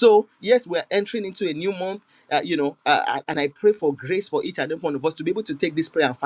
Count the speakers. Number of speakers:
1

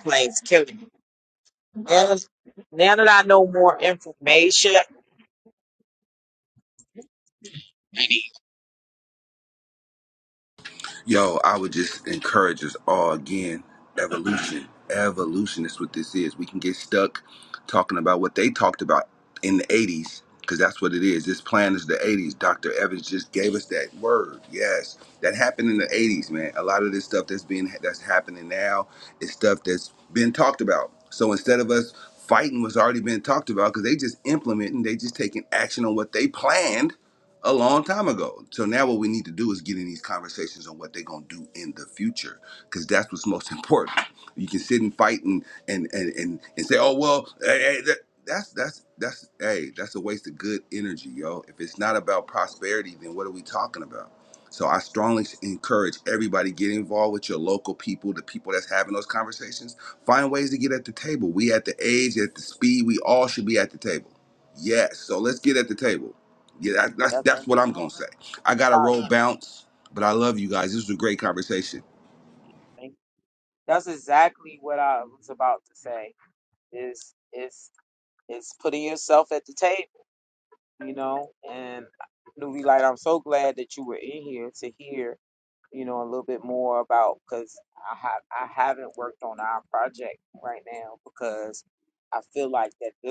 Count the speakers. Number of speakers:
2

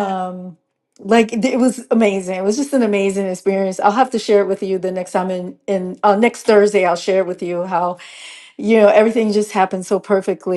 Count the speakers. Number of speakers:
1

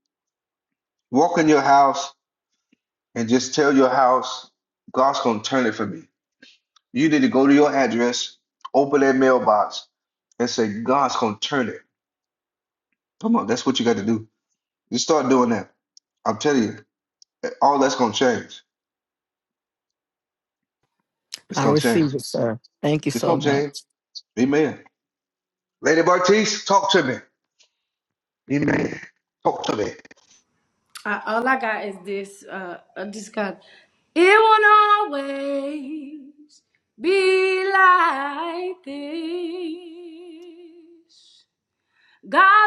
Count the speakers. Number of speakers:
3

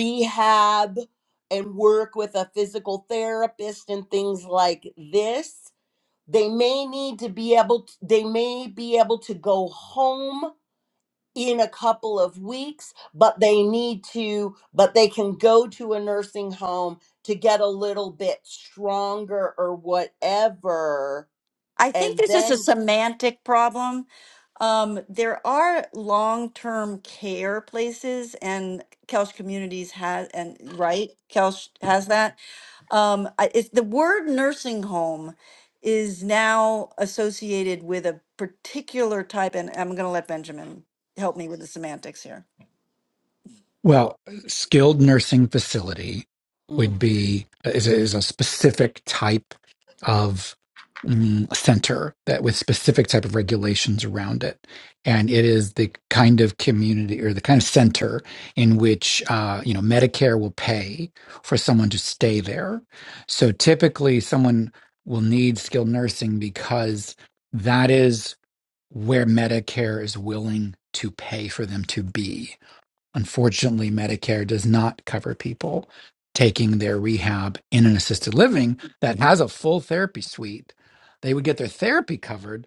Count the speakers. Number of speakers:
3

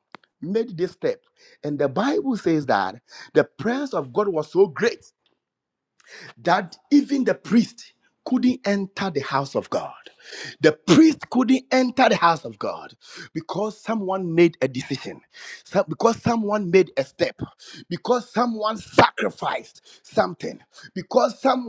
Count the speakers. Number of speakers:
1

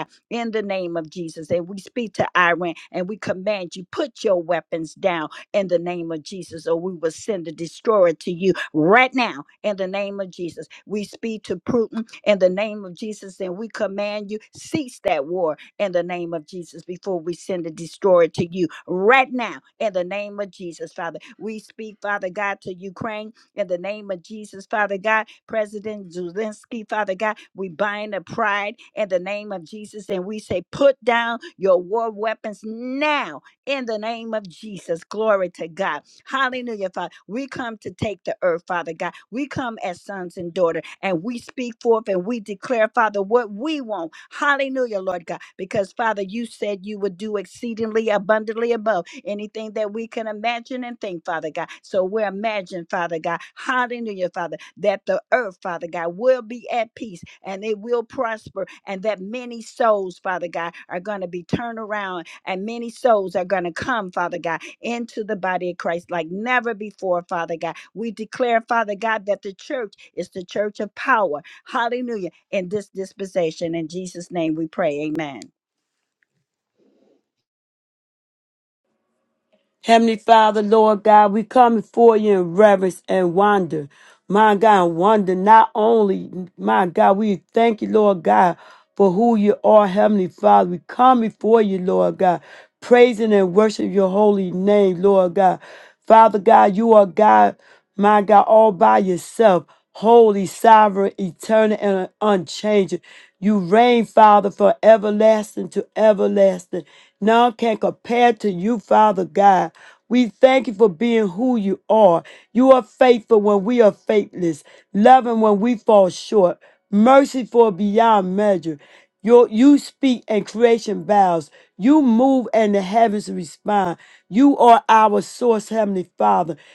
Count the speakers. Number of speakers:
2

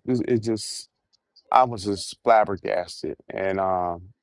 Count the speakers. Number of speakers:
1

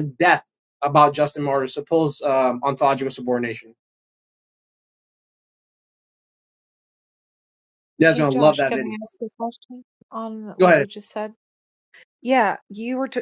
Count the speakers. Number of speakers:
2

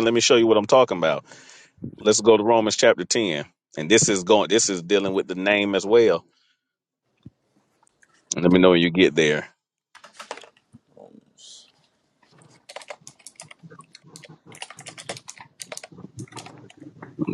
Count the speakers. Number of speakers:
1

